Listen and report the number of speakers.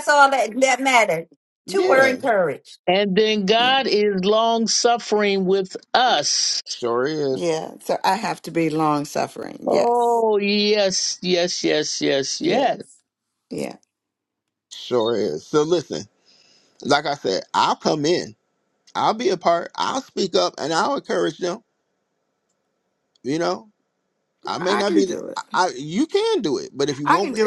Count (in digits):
4